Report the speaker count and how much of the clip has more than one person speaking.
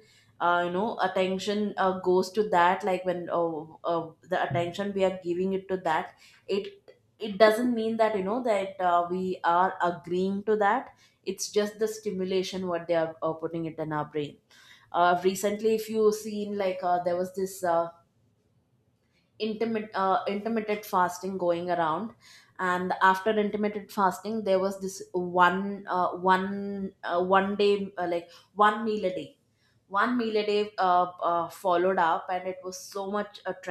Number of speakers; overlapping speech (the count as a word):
one, no overlap